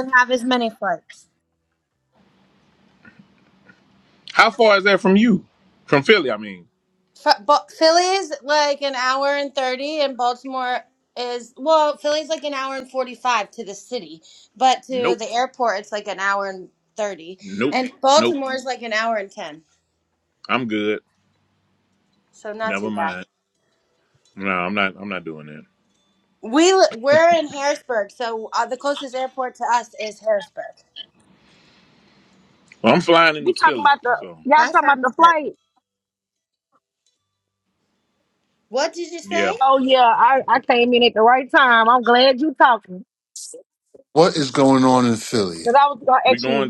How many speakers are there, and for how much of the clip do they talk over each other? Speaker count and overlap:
four, about 7%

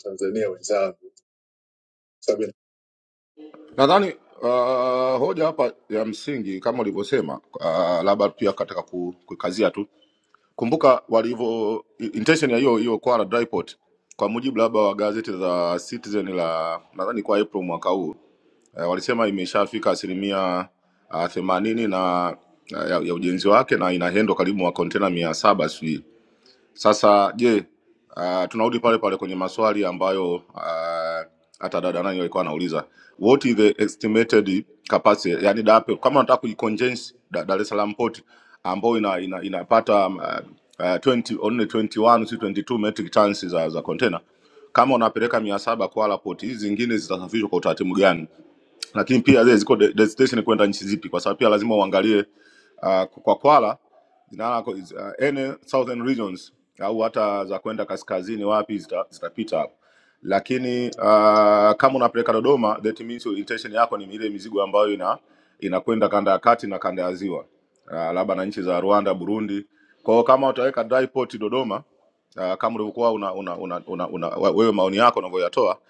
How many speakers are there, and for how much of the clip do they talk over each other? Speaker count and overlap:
two, no overlap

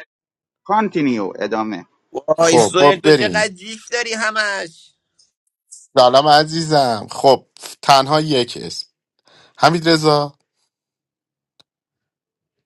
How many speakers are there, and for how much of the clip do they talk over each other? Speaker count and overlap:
three, about 8%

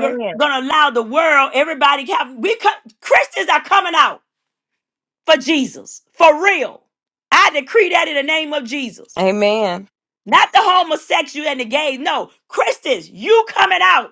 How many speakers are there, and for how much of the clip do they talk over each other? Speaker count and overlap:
two, about 3%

